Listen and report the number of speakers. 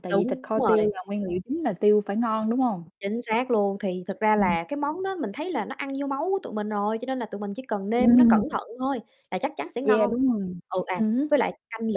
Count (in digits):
2